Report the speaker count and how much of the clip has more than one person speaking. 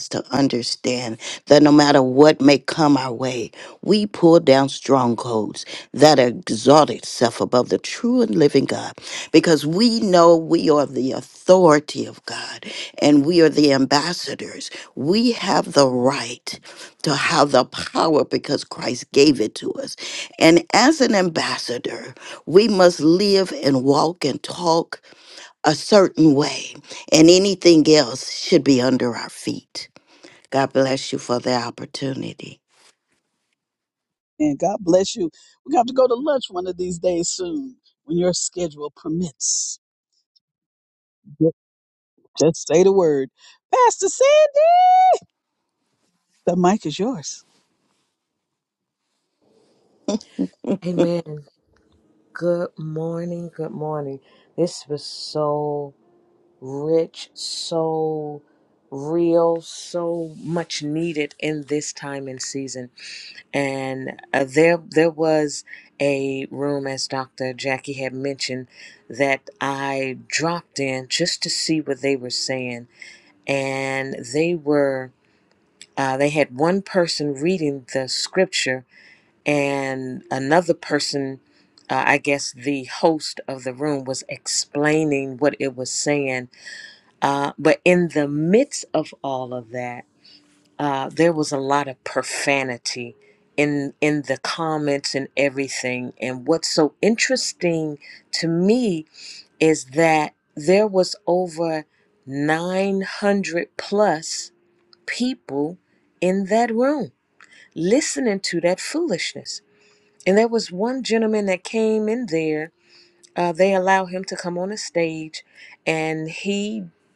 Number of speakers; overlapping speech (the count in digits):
3, no overlap